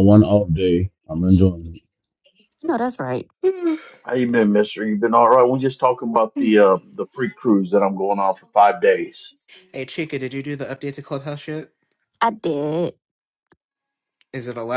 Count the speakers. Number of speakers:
4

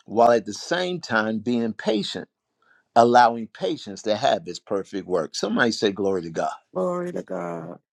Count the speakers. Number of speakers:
2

